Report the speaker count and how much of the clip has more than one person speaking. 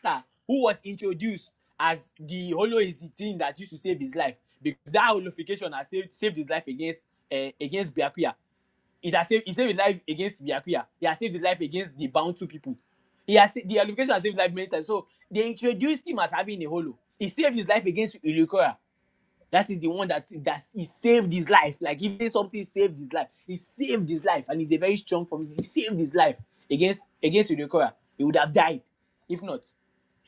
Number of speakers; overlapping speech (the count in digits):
1, no overlap